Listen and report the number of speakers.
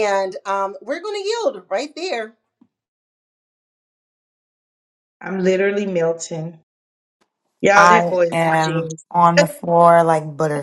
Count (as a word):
three